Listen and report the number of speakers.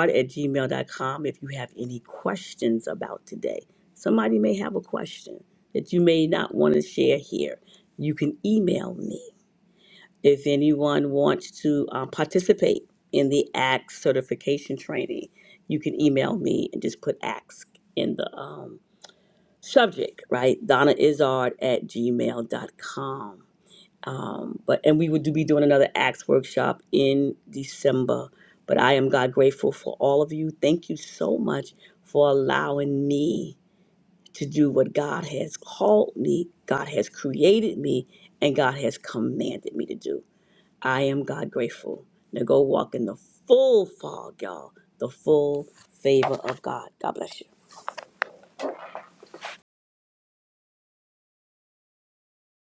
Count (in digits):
1